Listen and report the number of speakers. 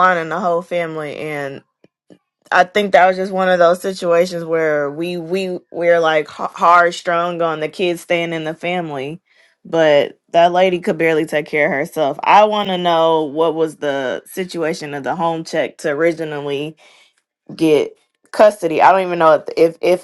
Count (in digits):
1